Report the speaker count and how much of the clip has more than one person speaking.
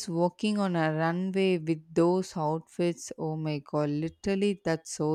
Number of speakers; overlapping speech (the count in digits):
1, no overlap